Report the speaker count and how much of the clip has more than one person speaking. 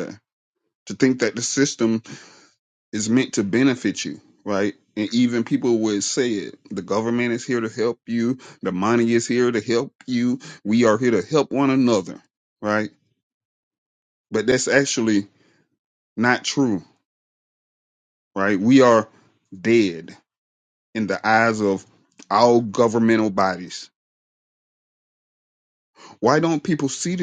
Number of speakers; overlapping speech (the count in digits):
1, no overlap